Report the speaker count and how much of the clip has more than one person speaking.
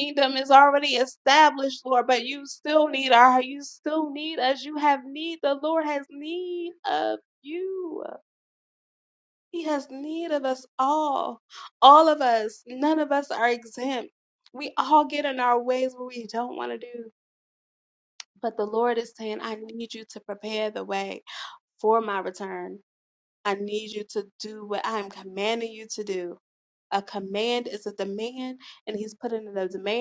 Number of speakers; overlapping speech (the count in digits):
1, no overlap